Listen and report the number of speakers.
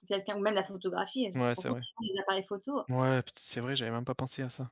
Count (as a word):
two